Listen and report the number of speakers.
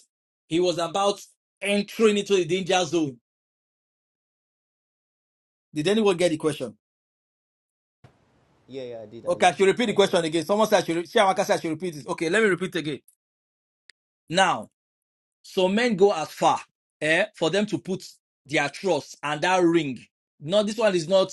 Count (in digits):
2